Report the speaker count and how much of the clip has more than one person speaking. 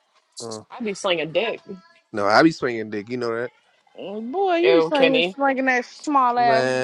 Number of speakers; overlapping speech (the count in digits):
3, about 17%